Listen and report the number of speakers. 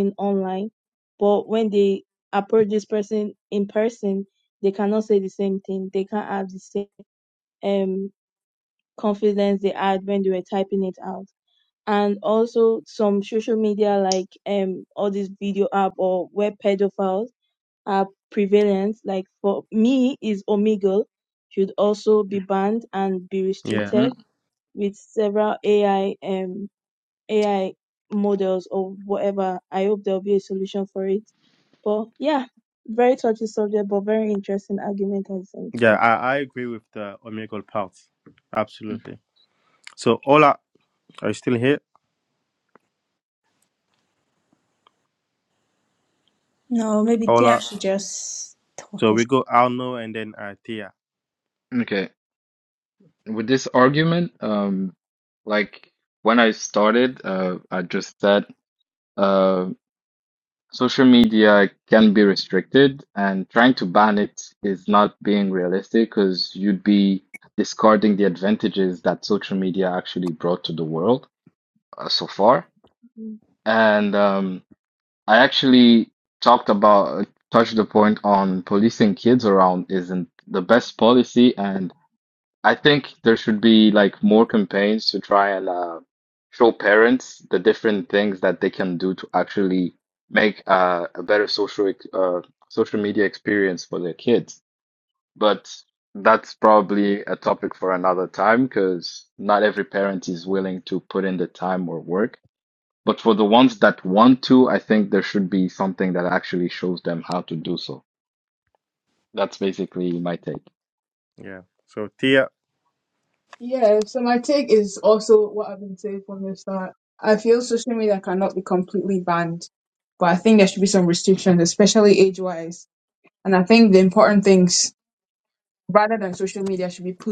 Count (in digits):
5